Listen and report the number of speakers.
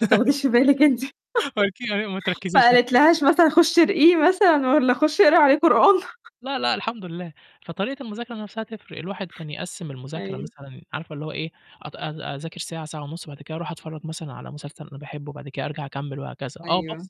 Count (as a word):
two